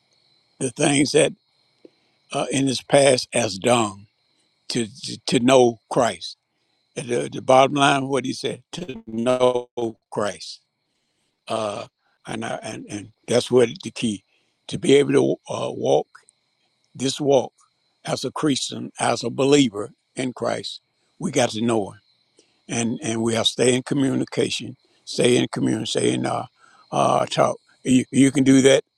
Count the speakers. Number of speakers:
1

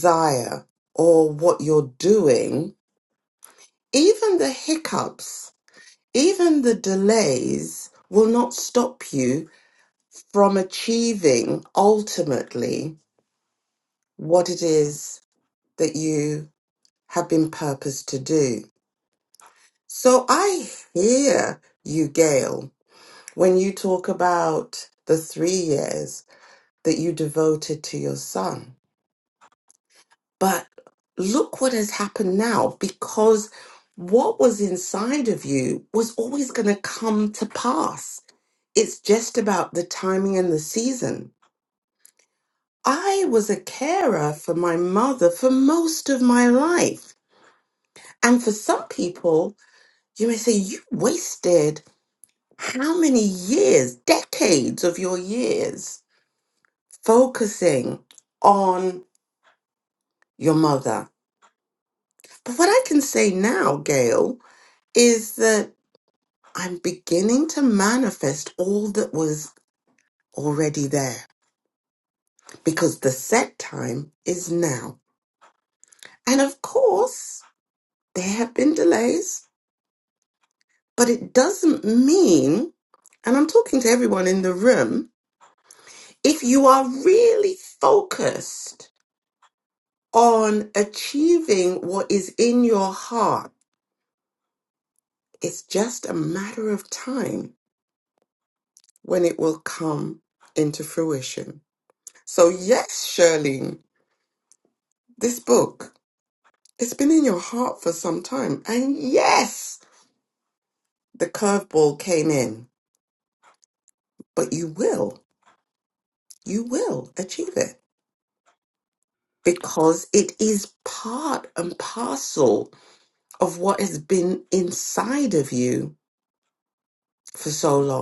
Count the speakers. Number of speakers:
1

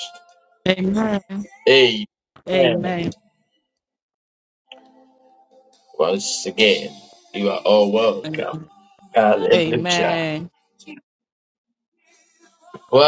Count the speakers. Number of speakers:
2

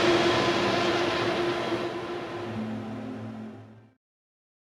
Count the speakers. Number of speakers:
0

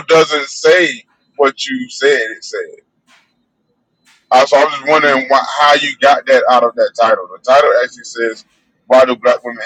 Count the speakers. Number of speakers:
1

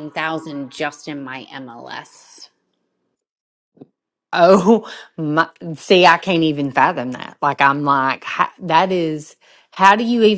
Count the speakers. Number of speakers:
2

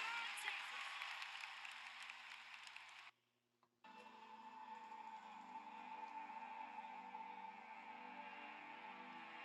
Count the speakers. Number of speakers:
0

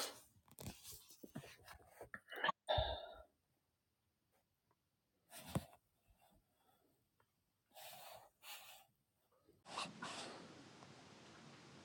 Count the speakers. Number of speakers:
0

